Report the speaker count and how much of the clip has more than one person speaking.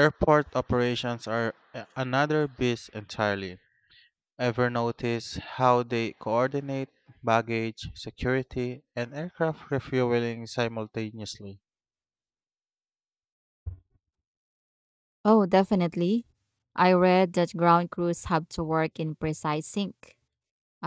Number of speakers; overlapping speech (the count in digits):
2, no overlap